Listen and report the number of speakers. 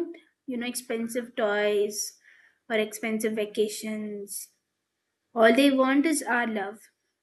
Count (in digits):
1